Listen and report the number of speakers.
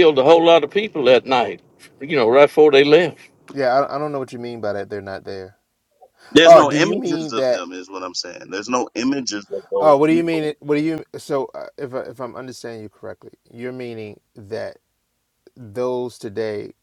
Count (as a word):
three